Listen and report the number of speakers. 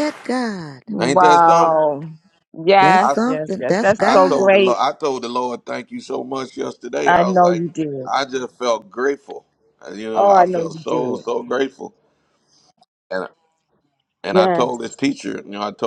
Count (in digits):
3